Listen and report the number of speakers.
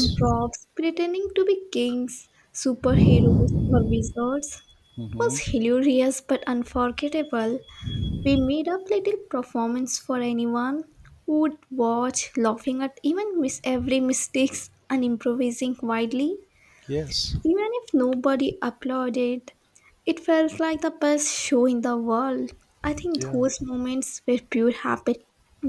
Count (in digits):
2